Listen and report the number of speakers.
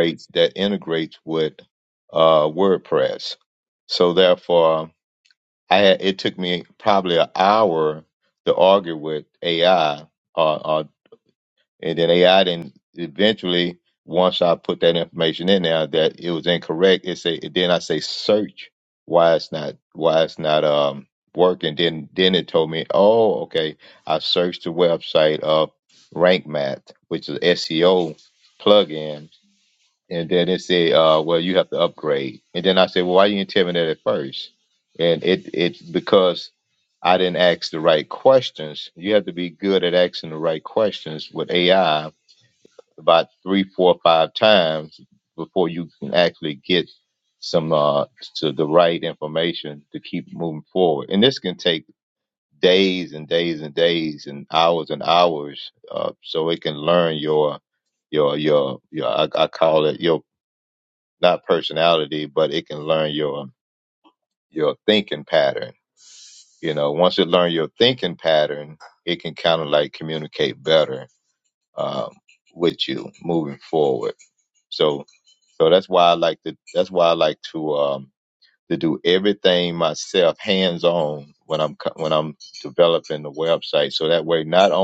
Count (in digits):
1